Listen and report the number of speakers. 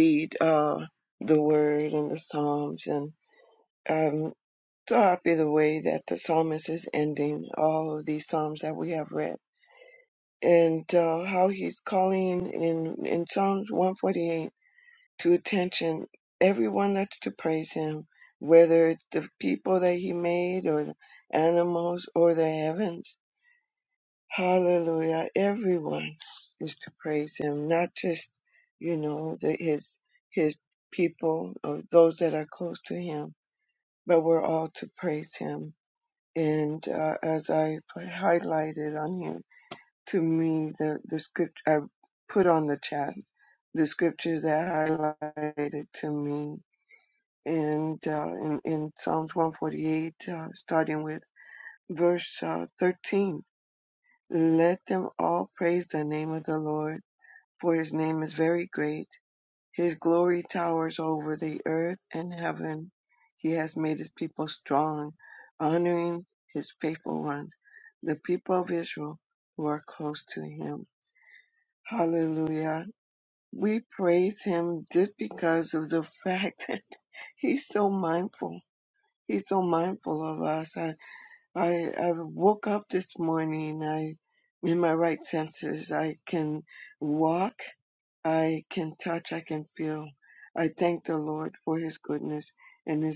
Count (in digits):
1